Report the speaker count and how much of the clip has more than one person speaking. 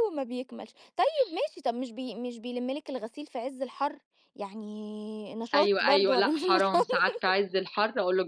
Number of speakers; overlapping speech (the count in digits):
2, about 17%